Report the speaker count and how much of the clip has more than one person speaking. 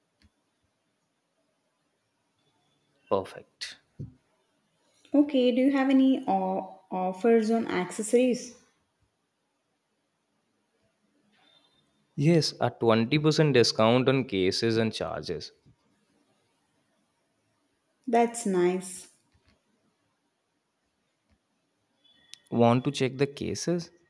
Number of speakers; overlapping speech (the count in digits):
2, no overlap